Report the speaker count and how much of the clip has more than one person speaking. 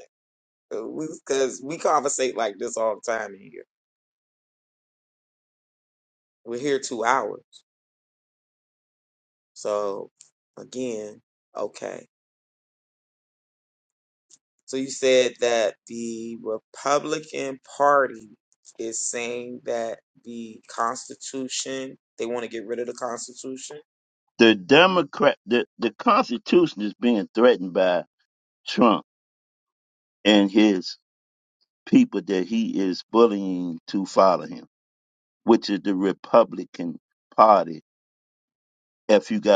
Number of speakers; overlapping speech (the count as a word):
two, no overlap